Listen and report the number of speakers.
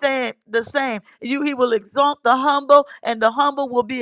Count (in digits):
1